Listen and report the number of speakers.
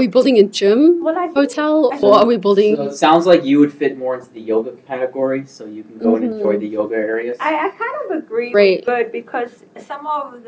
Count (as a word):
three